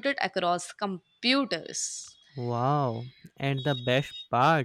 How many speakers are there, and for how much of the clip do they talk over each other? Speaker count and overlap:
2, no overlap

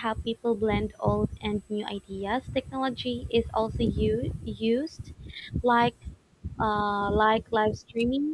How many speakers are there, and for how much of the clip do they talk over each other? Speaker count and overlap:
1, no overlap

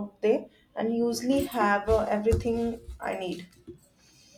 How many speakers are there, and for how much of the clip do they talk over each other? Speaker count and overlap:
1, no overlap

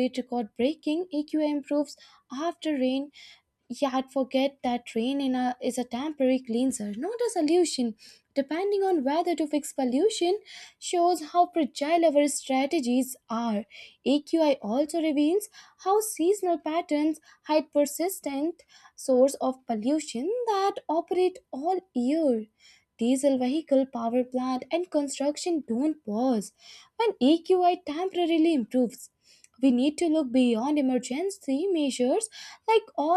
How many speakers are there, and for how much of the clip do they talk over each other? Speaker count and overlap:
1, no overlap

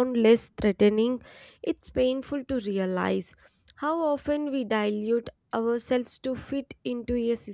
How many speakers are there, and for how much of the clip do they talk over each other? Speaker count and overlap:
1, no overlap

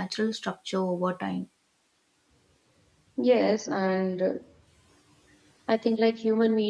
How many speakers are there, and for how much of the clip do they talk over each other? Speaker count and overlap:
2, no overlap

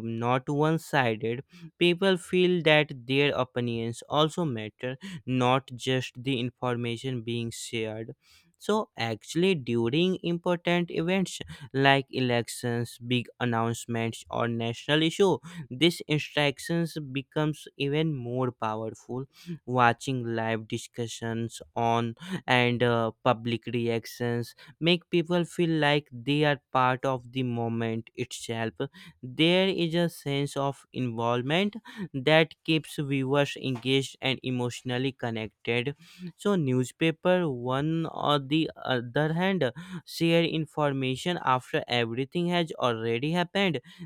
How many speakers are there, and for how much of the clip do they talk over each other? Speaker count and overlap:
1, no overlap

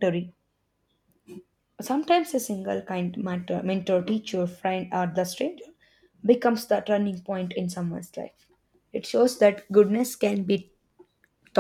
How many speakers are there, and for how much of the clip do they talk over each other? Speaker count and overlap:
1, no overlap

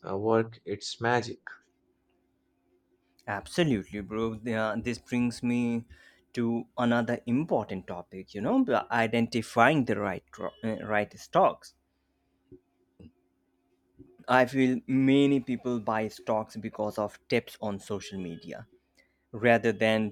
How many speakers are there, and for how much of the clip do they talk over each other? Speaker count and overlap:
2, no overlap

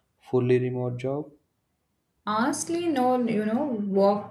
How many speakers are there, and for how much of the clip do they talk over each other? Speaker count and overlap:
2, no overlap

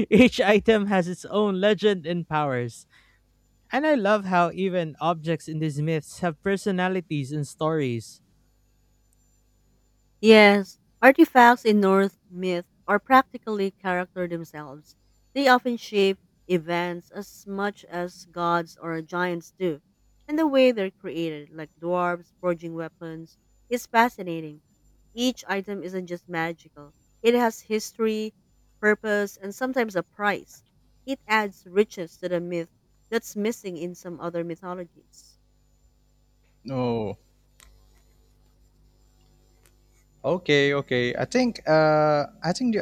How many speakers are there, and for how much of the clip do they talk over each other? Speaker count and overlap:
3, no overlap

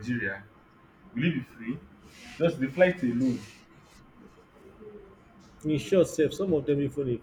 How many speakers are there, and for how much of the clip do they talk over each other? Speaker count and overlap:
2, no overlap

